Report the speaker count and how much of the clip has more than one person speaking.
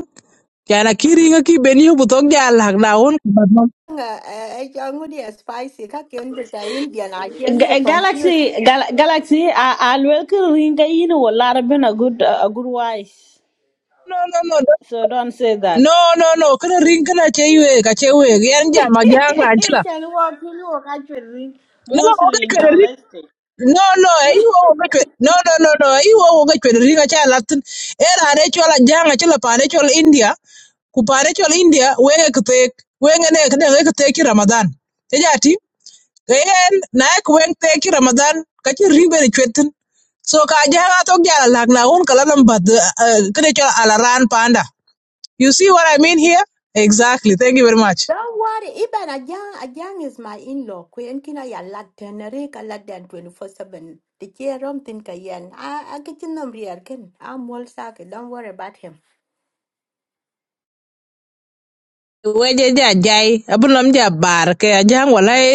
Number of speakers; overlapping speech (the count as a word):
three, about 4%